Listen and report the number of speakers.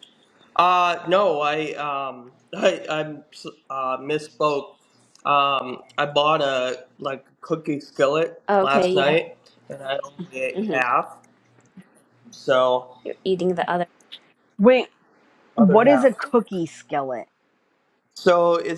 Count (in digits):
3